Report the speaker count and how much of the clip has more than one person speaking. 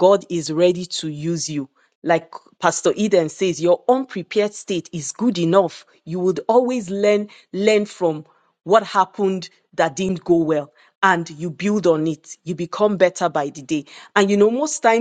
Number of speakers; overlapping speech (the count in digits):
1, no overlap